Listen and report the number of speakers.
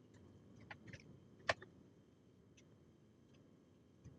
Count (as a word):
zero